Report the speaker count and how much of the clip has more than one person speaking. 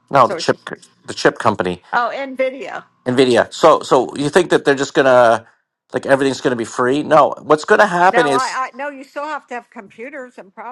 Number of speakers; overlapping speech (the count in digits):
2, about 5%